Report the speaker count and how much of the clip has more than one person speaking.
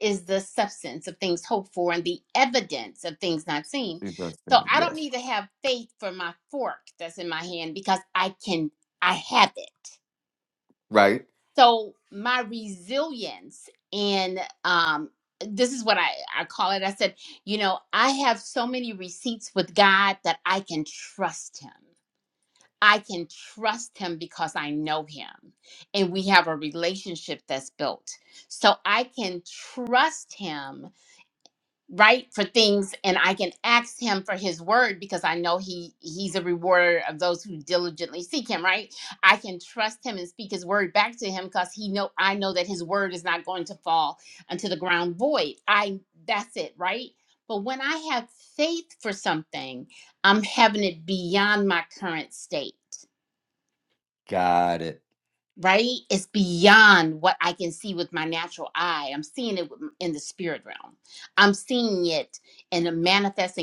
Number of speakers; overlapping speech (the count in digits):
2, about 1%